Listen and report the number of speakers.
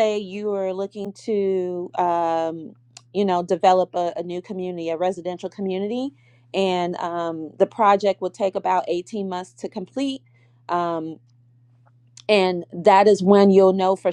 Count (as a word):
one